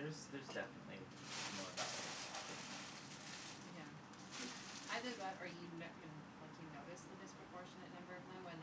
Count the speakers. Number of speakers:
2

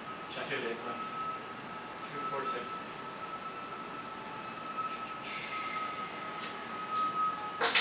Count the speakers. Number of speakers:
1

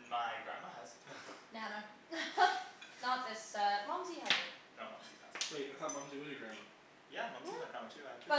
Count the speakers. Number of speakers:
3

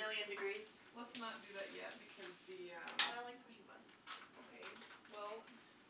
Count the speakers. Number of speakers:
2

